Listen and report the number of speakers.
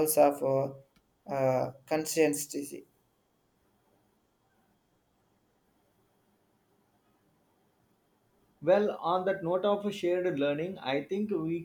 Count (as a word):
two